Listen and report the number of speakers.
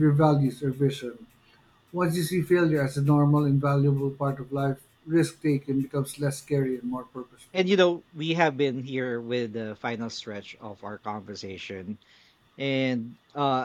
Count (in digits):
2